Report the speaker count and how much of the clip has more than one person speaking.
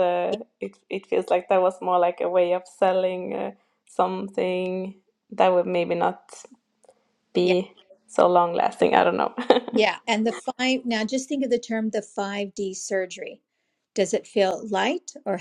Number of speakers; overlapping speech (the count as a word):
two, about 1%